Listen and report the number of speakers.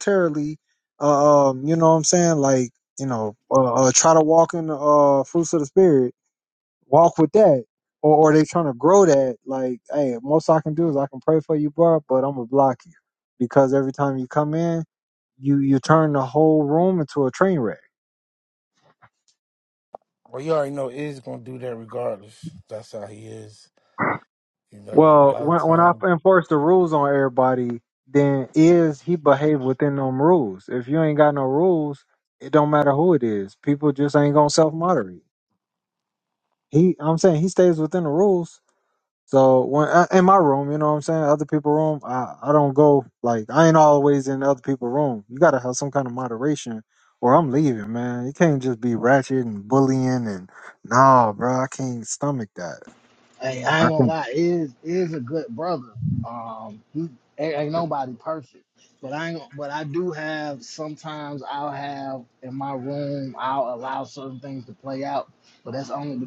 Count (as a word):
three